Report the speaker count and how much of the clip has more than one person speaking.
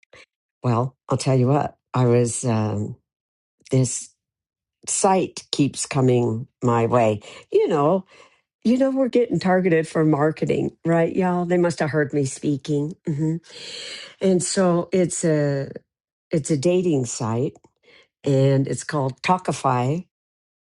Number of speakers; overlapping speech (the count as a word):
one, no overlap